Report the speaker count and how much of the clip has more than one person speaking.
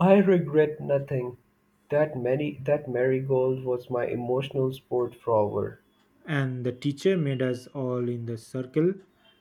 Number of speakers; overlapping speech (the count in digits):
2, no overlap